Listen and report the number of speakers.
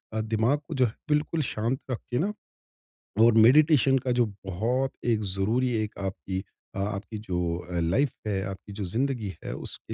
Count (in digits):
1